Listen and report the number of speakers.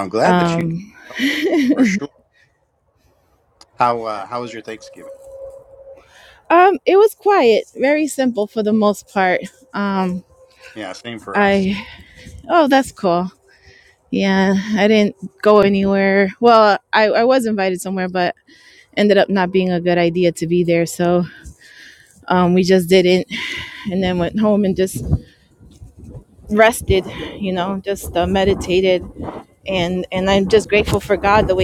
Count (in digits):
2